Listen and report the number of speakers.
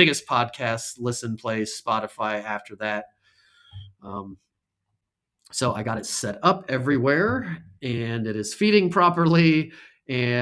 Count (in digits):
1